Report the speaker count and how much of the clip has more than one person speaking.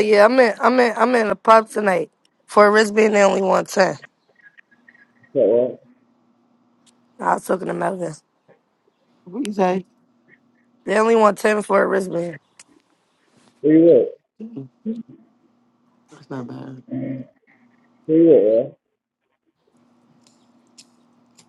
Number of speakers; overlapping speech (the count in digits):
3, under 1%